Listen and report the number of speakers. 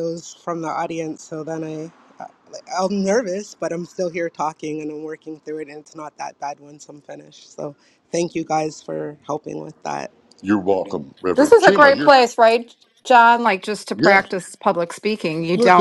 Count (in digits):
3